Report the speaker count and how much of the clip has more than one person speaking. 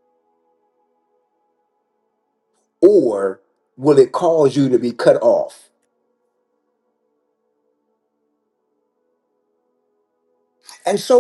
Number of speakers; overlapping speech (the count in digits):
1, no overlap